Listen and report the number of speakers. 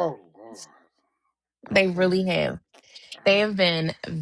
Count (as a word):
two